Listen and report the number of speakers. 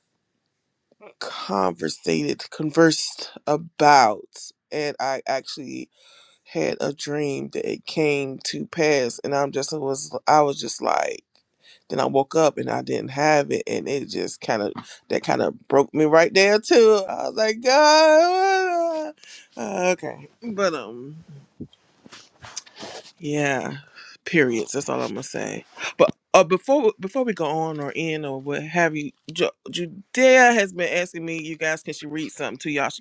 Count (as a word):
one